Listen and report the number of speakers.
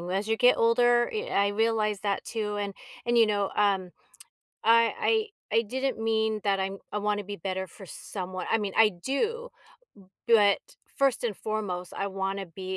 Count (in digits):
1